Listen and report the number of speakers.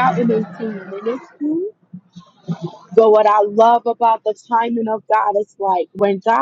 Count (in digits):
1